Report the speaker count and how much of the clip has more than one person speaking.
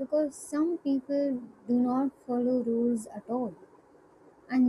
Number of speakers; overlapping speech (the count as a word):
one, no overlap